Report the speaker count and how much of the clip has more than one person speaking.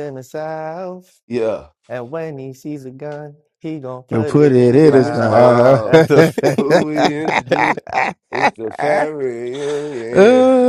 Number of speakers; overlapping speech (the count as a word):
three, about 19%